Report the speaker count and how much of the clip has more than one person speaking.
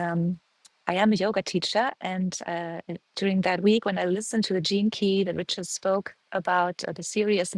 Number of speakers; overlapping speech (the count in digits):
1, no overlap